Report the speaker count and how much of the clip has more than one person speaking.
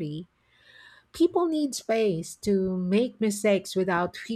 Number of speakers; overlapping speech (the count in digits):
1, no overlap